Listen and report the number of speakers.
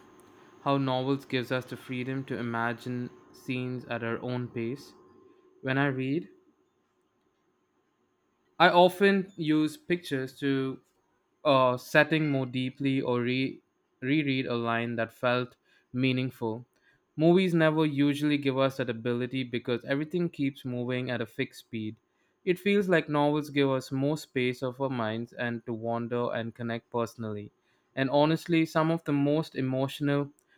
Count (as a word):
one